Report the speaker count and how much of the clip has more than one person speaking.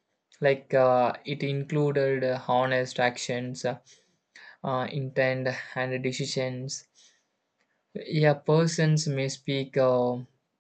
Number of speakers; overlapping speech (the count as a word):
one, no overlap